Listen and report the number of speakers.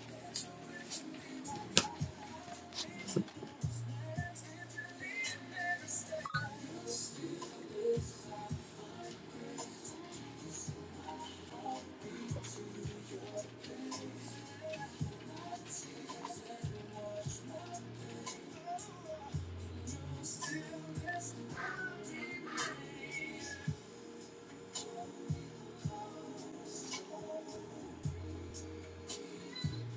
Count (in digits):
0